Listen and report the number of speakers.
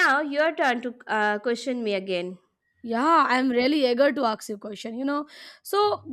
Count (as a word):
two